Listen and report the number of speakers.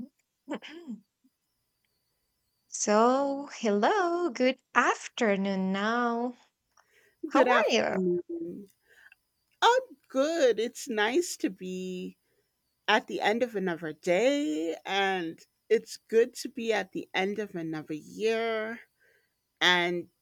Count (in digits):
2